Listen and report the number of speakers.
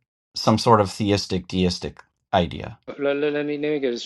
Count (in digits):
2